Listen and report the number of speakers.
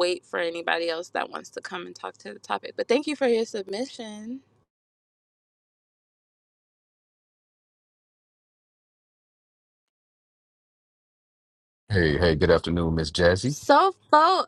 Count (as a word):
two